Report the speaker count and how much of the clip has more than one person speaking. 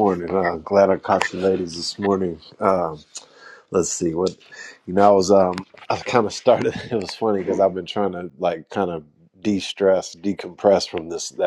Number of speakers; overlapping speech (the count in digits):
1, no overlap